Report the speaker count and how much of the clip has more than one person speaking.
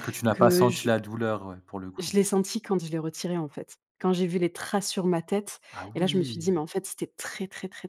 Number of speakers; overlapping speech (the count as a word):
two, about 15%